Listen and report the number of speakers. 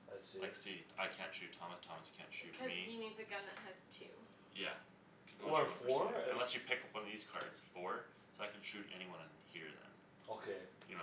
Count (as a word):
three